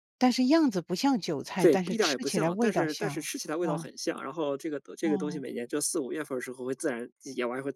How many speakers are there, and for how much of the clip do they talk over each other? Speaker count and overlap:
2, about 28%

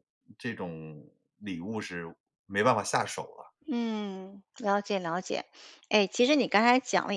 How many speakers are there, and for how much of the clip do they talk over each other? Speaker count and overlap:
2, no overlap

